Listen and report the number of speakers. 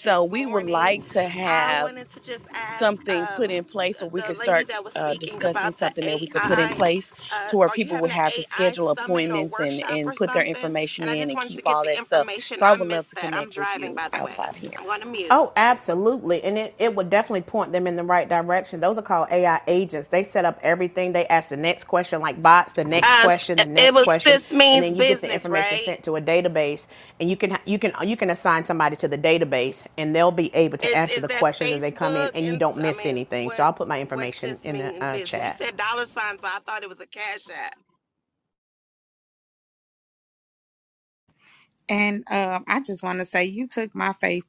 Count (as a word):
four